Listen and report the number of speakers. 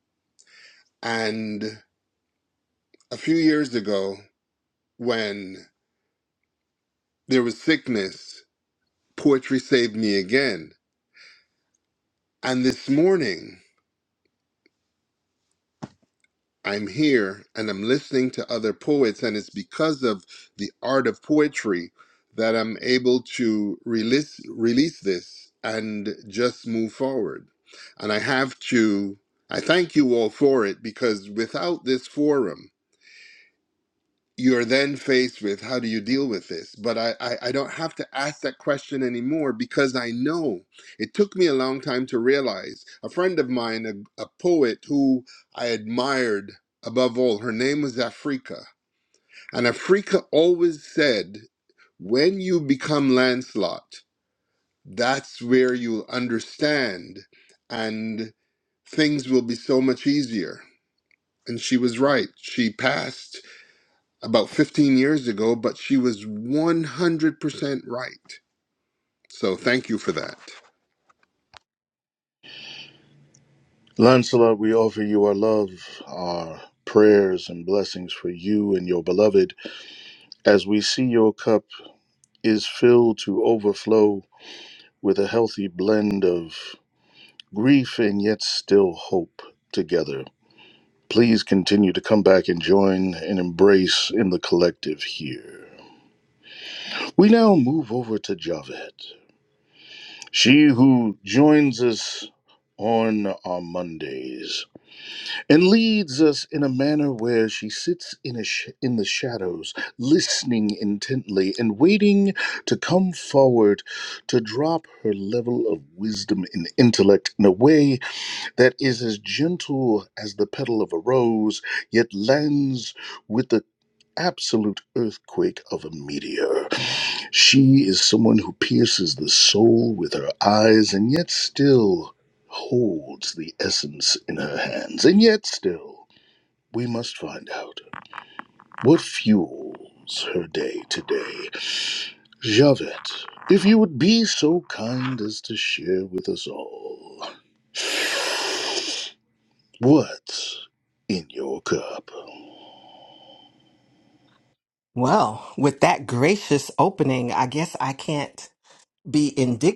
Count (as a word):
three